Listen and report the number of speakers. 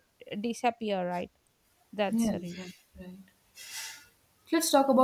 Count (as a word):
two